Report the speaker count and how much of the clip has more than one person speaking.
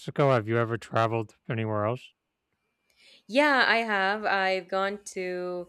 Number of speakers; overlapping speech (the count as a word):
two, no overlap